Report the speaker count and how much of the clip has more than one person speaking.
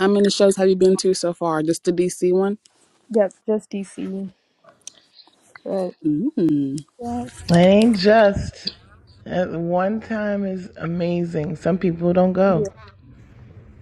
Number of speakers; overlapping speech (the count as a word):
three, about 1%